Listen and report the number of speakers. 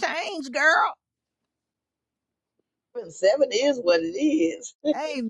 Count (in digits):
2